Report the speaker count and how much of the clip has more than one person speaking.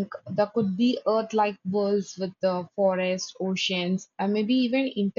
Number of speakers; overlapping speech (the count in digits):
1, no overlap